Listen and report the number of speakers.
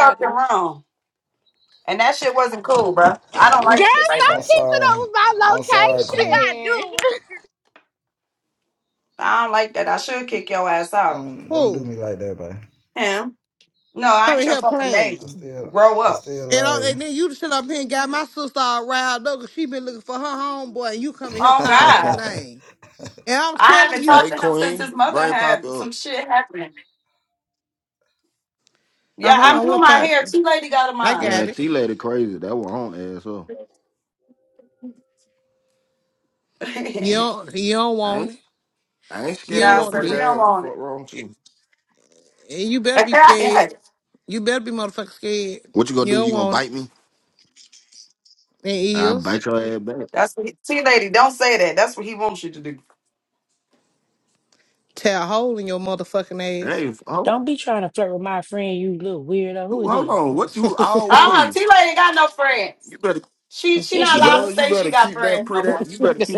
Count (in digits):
6